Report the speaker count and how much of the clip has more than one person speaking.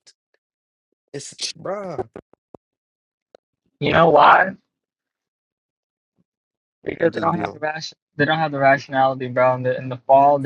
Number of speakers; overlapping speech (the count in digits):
2, about 5%